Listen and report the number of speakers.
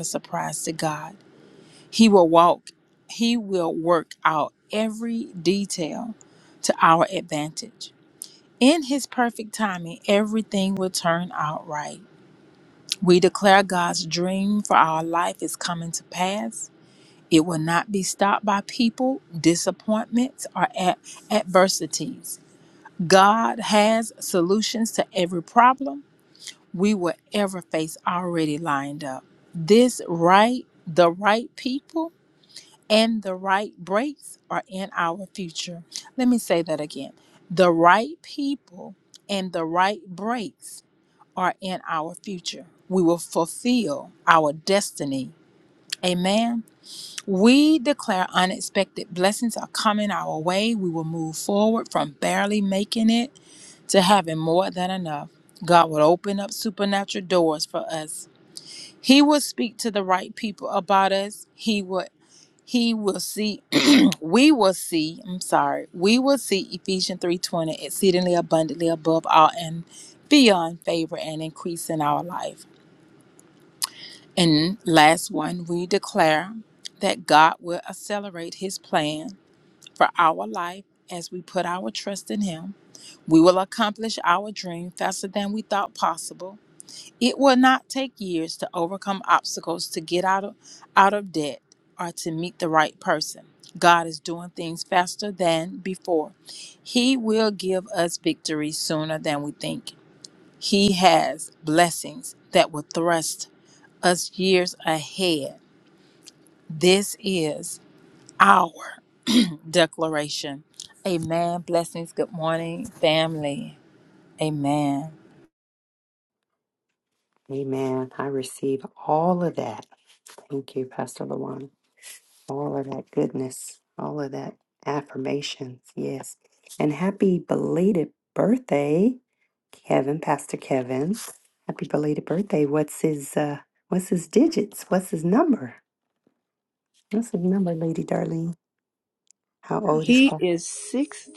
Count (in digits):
3